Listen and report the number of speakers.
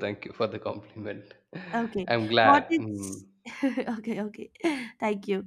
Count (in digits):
2